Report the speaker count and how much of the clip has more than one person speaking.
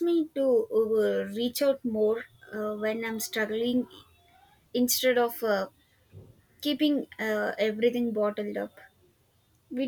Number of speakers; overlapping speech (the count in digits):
1, no overlap